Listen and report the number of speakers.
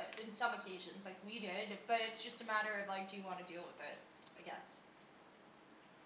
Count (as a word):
one